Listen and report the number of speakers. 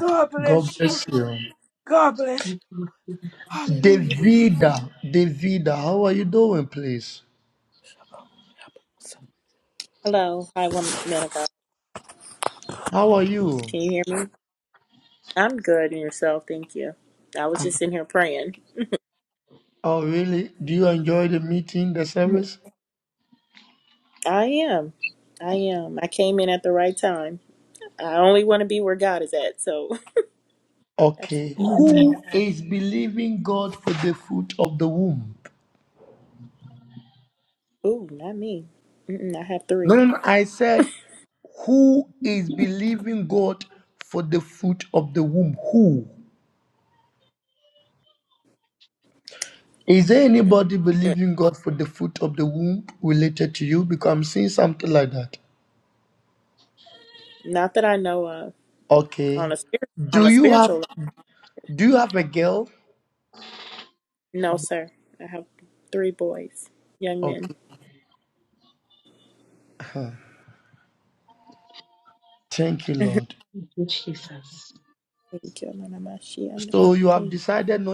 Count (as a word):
four